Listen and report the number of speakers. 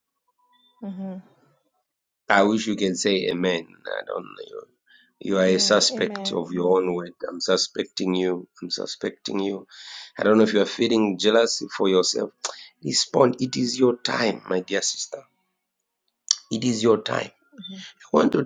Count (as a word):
two